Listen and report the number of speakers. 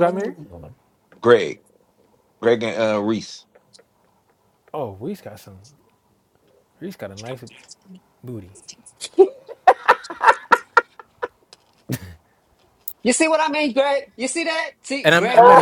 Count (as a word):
three